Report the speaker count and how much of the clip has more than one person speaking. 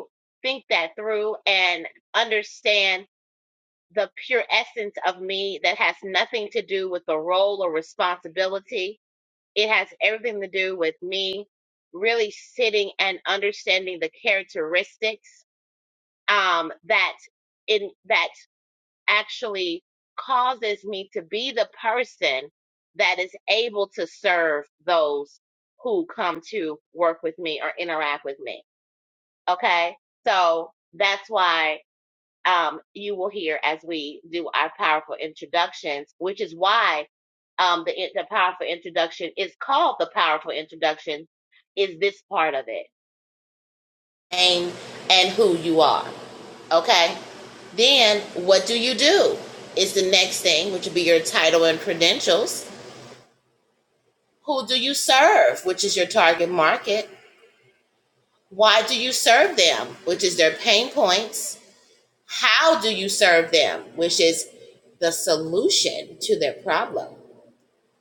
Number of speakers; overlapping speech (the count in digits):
1, no overlap